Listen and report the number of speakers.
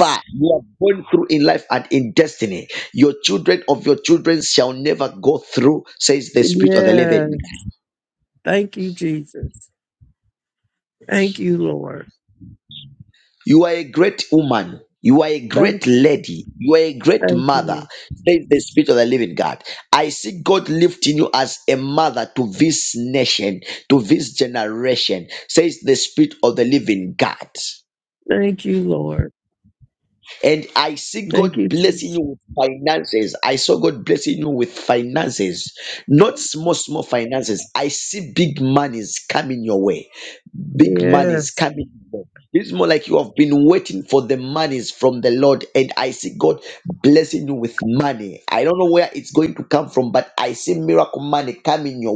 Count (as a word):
two